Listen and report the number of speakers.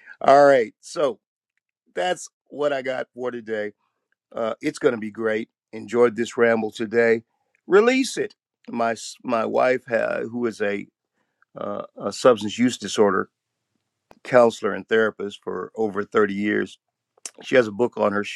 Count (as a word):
one